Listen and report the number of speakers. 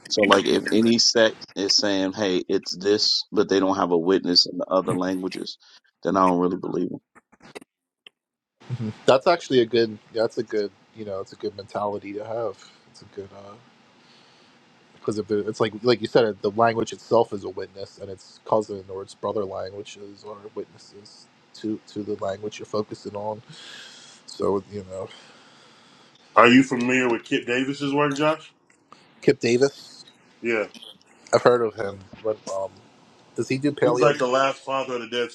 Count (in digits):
3